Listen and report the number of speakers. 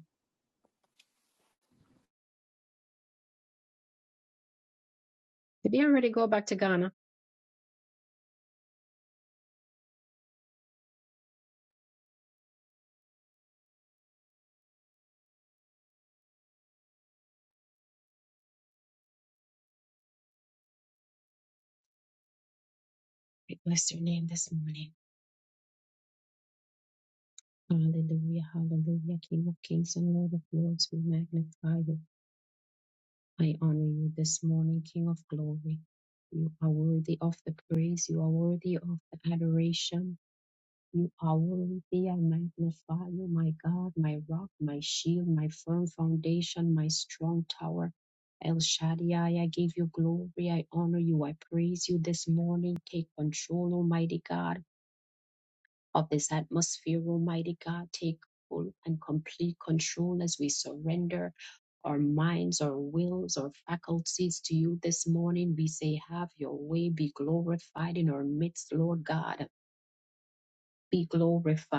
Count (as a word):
one